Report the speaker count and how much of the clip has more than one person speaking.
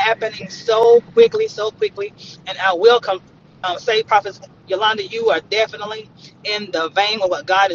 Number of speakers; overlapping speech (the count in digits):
1, no overlap